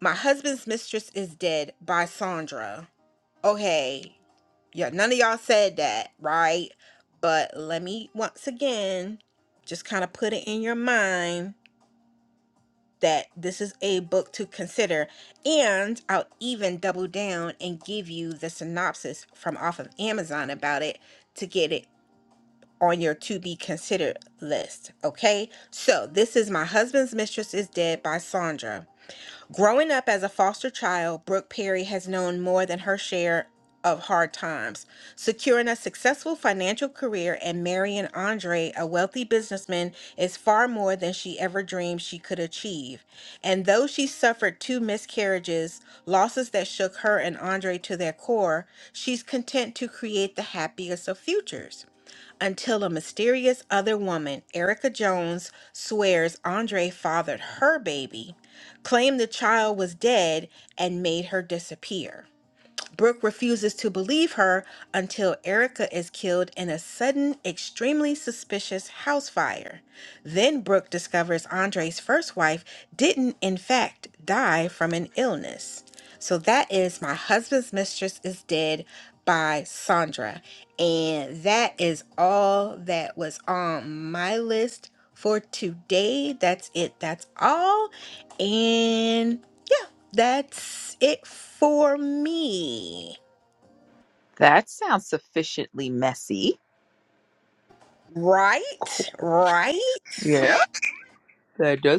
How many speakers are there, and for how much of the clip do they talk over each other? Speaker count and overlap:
two, under 1%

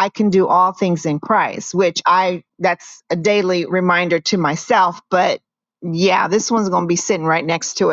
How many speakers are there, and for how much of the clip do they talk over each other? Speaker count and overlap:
one, no overlap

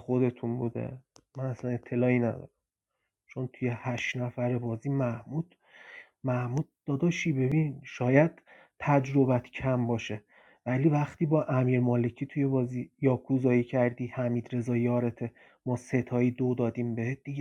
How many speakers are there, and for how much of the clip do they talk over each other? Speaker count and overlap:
one, no overlap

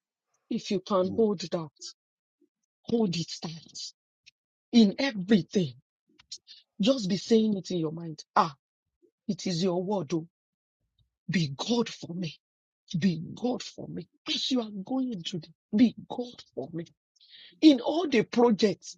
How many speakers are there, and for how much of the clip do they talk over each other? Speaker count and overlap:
one, no overlap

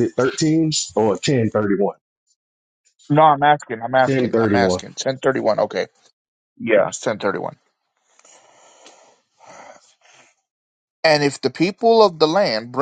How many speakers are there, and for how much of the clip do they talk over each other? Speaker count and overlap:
two, about 6%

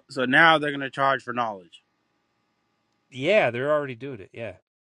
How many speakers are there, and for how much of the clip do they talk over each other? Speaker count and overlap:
two, no overlap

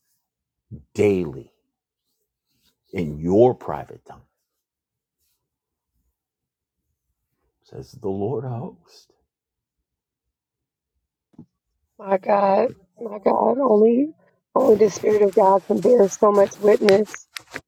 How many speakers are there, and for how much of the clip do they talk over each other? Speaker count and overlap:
two, no overlap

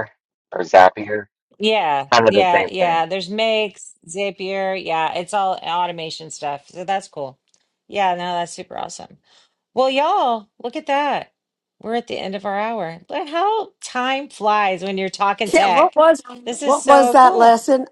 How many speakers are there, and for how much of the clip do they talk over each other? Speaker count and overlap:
three, about 12%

